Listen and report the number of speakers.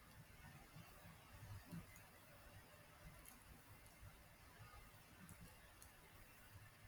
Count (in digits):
0